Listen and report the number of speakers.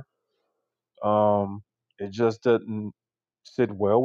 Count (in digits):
1